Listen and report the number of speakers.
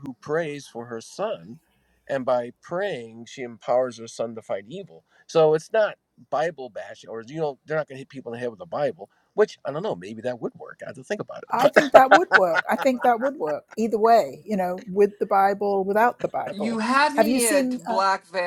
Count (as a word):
three